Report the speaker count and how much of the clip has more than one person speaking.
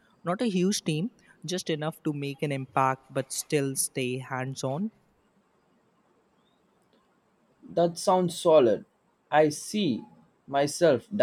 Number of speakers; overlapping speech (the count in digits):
2, no overlap